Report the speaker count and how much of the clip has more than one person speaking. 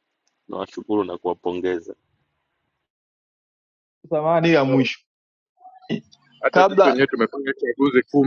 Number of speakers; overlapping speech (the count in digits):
3, about 9%